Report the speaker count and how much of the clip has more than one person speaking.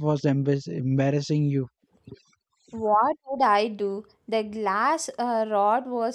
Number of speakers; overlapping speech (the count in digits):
2, no overlap